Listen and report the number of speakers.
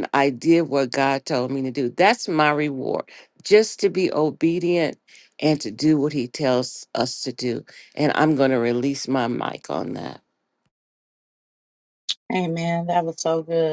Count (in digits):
2